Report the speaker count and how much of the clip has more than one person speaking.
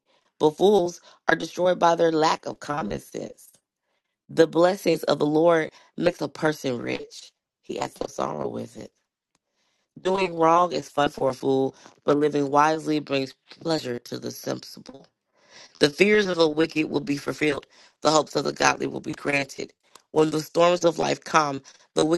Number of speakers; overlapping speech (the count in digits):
1, no overlap